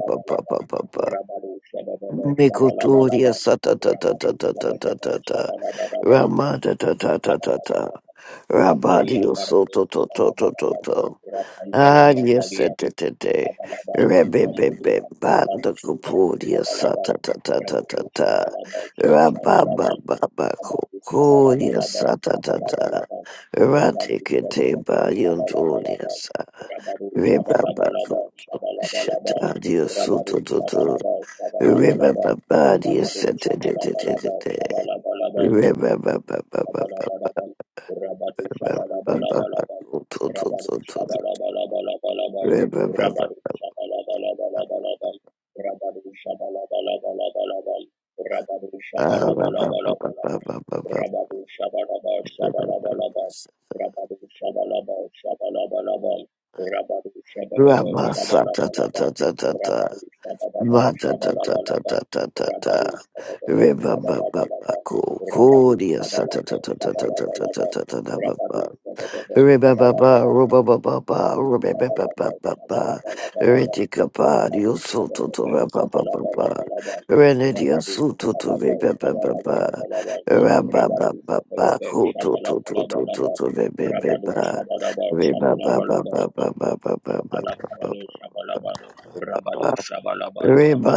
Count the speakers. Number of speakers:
2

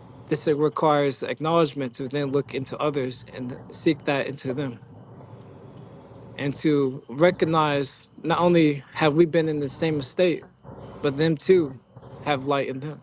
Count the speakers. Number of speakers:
1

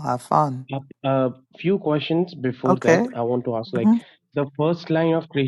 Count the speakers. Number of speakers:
2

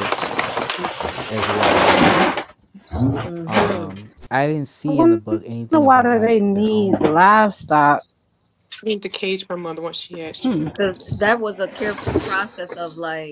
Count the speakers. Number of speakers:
4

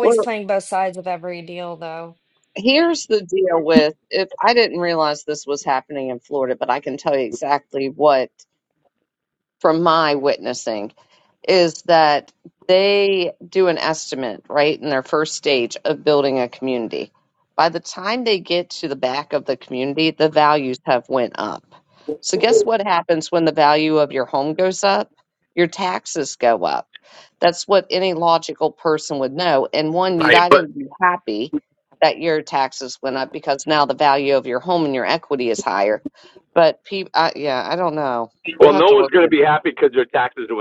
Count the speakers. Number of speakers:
3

